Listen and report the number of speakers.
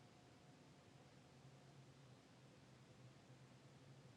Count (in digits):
0